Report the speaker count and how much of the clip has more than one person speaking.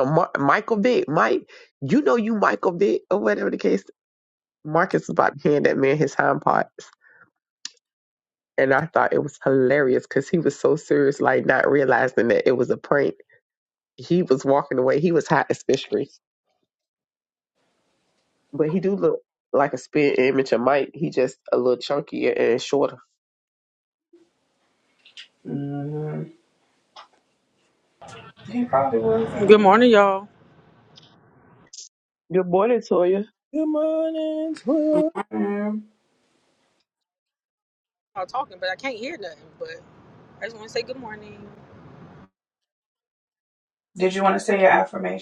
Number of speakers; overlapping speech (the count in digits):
4, about 1%